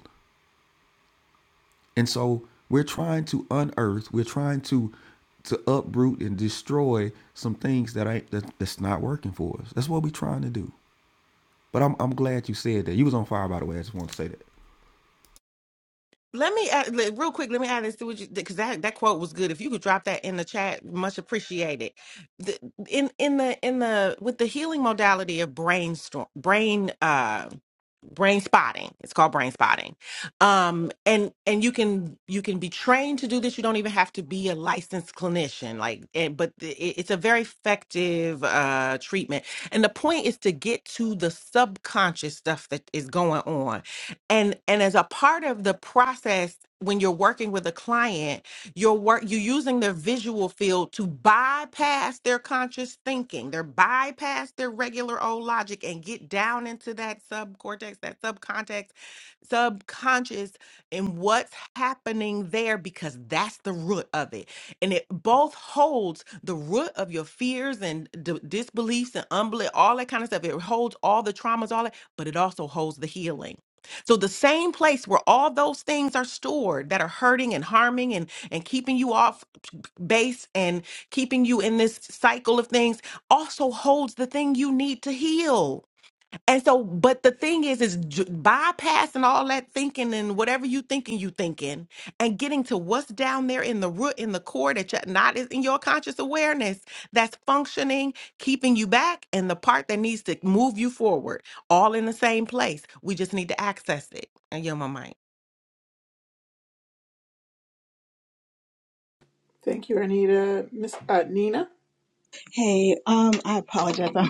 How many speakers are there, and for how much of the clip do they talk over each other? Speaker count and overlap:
4, no overlap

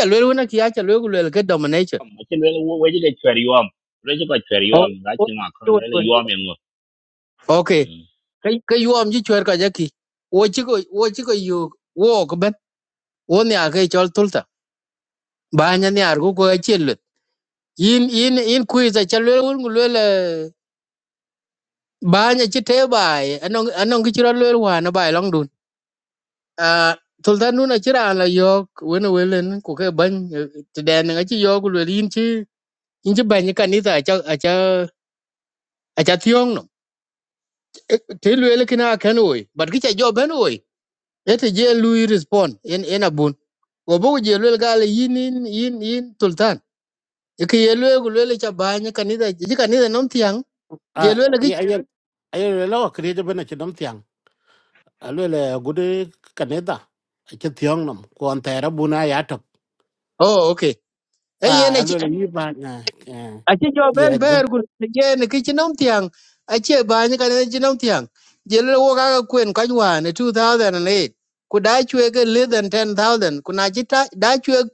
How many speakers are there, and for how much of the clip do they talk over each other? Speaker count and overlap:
3, about 3%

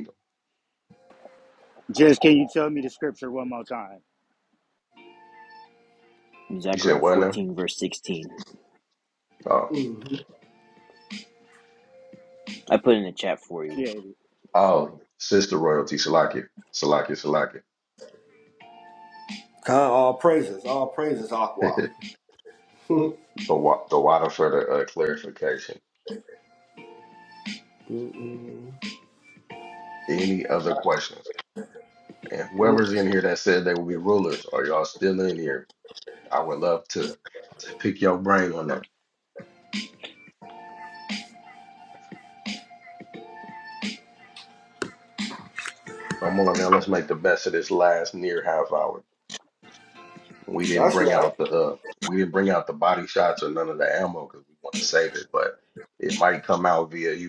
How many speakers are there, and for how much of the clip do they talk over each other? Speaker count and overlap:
4, about 4%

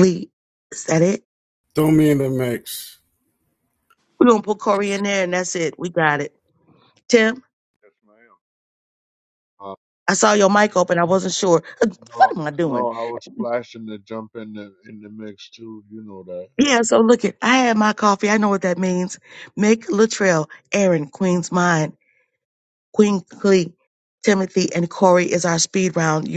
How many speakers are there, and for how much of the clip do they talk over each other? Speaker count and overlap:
3, about 3%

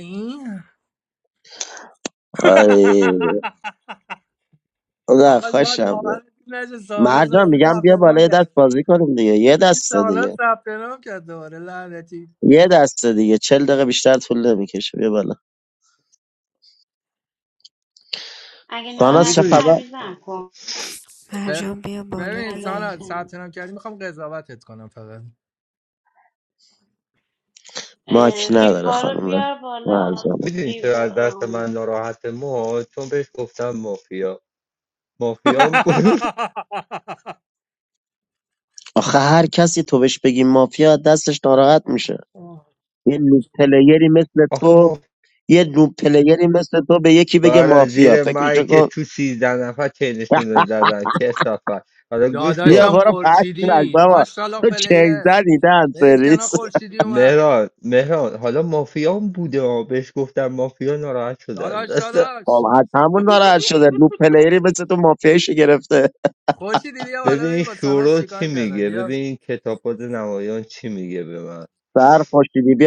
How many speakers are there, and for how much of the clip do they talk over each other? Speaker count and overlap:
5, about 23%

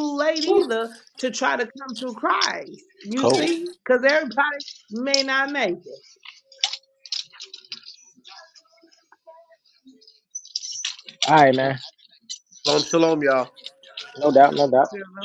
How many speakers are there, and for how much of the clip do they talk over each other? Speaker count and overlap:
3, about 3%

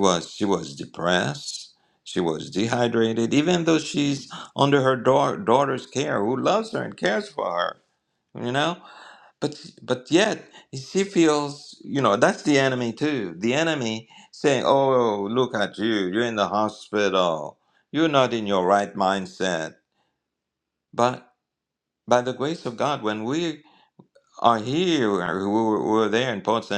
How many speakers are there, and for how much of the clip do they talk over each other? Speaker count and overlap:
1, no overlap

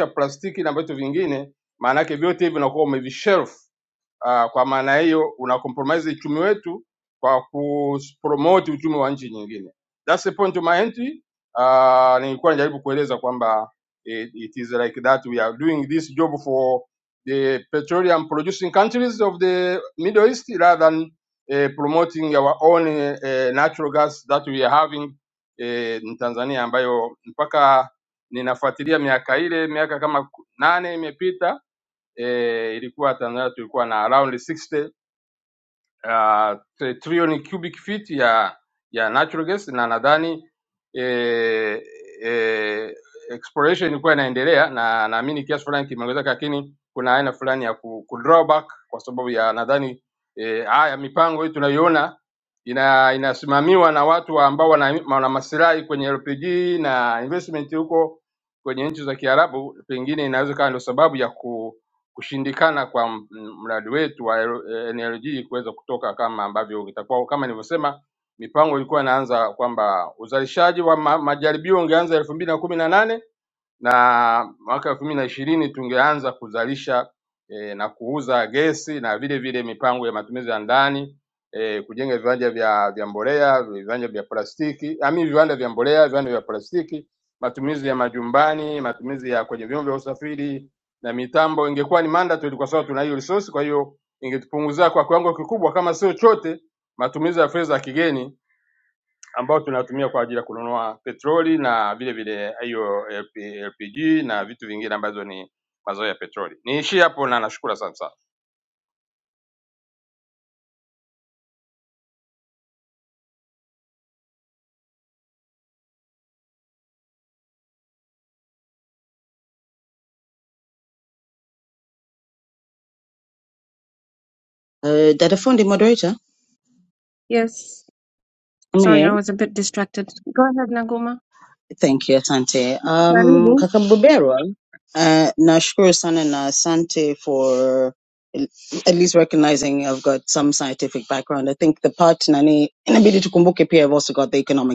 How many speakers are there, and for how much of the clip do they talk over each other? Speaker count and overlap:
3, under 1%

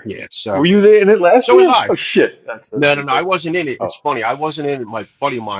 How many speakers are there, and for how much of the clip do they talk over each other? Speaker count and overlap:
2, about 20%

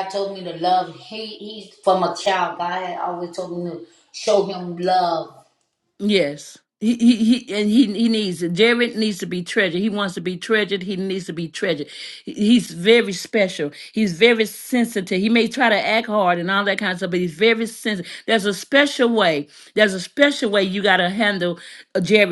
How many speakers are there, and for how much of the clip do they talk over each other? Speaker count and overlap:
2, no overlap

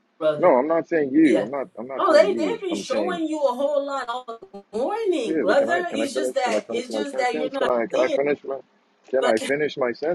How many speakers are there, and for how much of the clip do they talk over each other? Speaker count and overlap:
2, about 47%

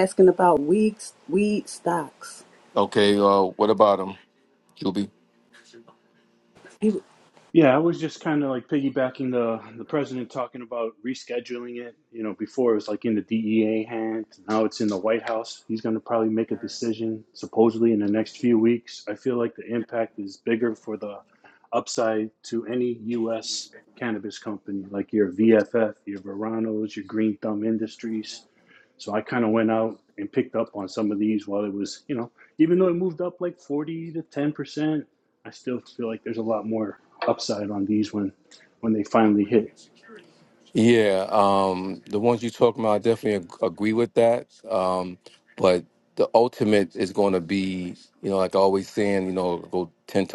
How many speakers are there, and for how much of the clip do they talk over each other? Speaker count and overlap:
3, no overlap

